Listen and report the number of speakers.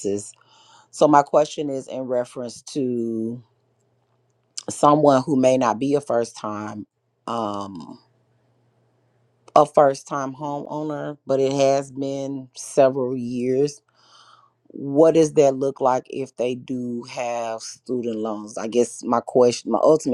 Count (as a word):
one